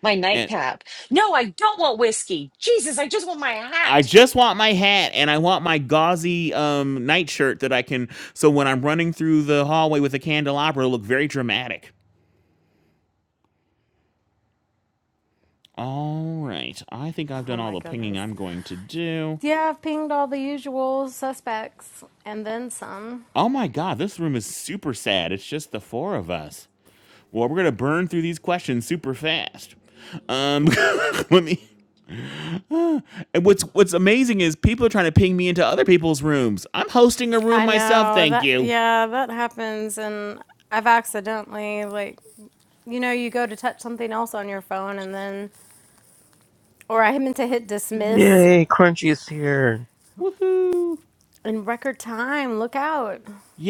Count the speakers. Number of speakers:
four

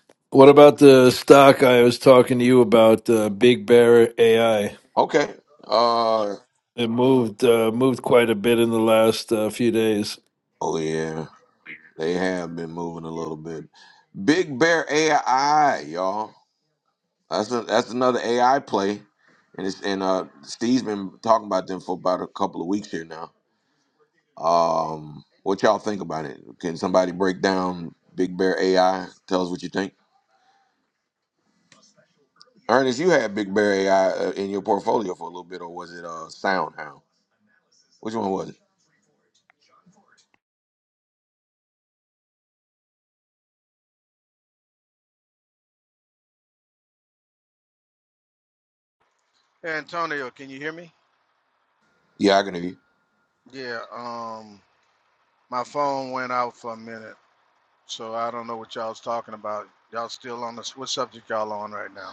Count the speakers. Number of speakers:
three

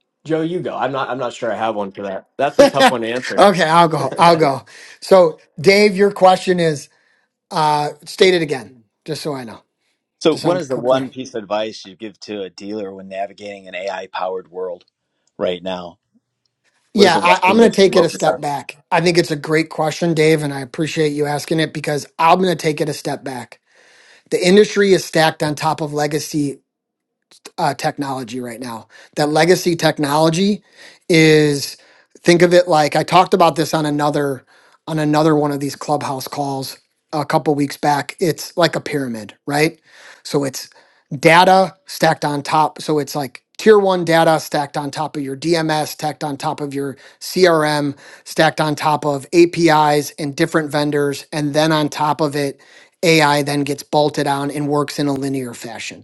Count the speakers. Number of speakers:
three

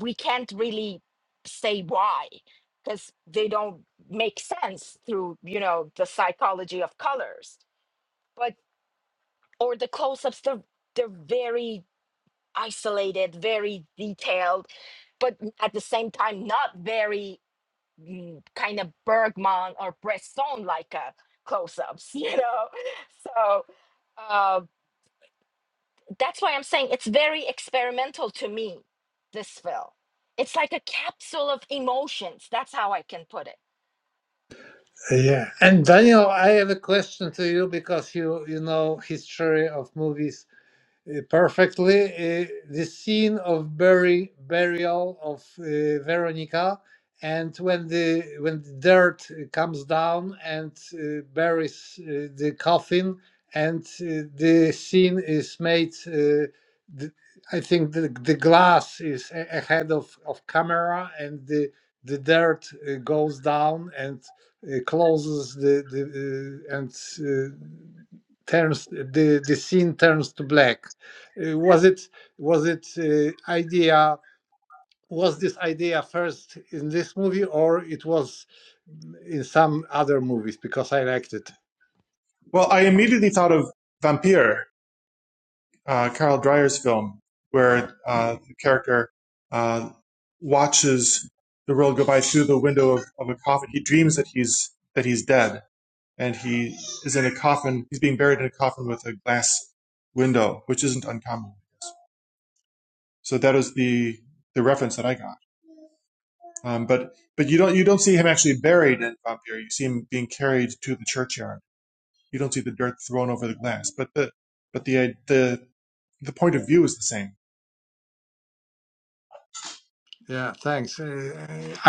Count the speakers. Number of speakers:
three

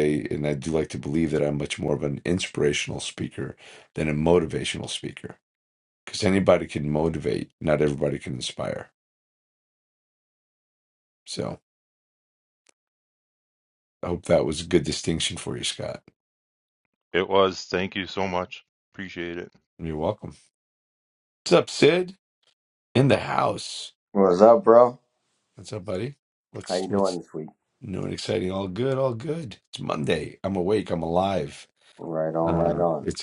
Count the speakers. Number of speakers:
three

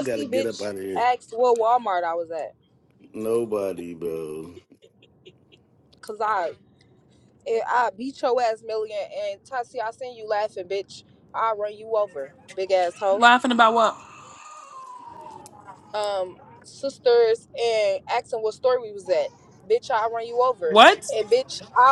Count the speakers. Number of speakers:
three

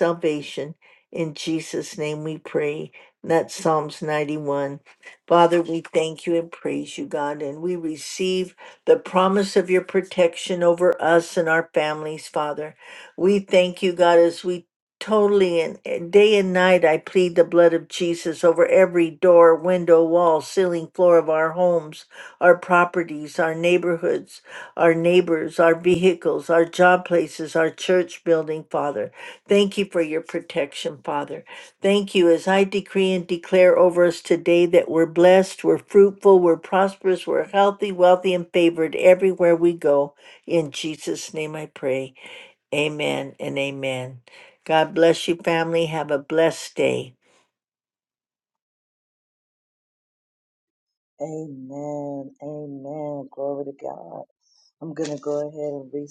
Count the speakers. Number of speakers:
two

